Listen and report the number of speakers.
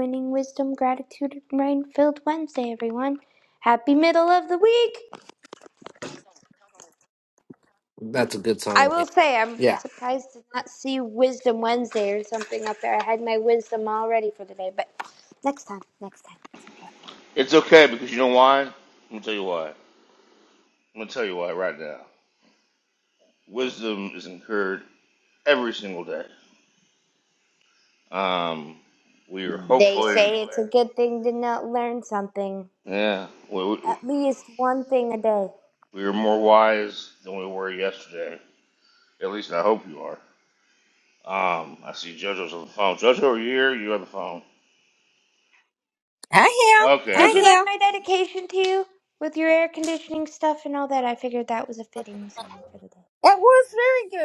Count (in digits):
4